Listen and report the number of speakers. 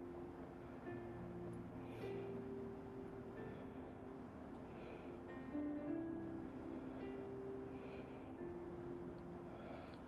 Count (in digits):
0